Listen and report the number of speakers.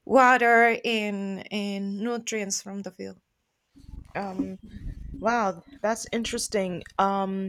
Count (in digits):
2